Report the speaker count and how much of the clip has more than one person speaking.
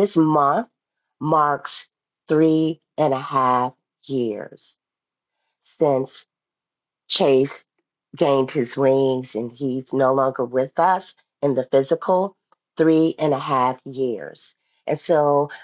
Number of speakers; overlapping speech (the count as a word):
one, no overlap